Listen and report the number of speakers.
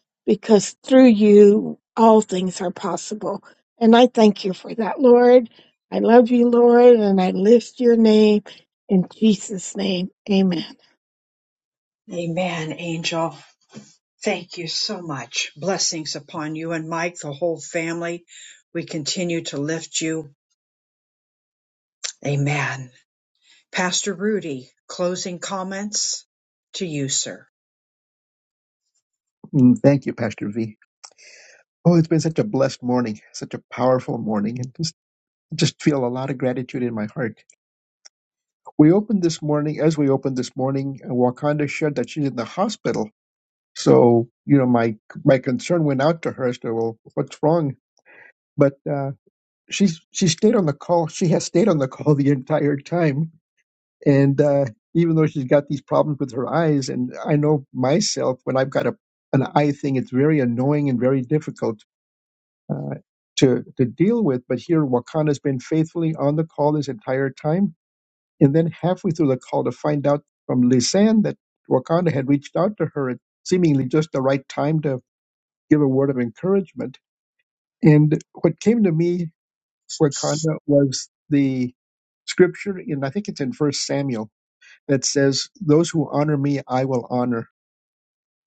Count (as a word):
three